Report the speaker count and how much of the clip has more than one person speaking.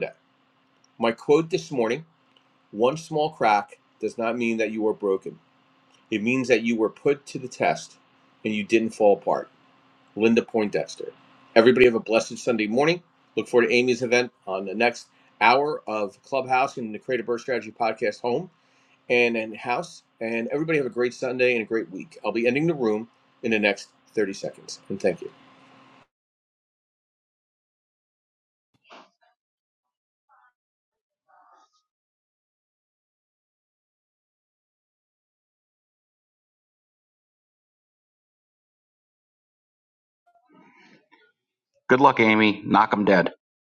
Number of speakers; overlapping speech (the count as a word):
two, no overlap